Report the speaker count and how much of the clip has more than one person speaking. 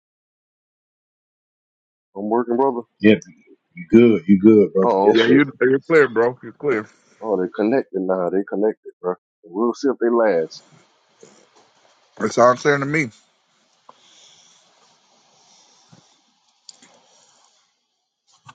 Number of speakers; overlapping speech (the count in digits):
3, about 3%